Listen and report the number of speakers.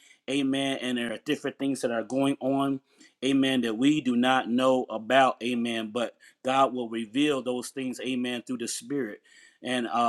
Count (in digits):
1